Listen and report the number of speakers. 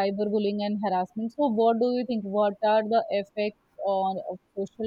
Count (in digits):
1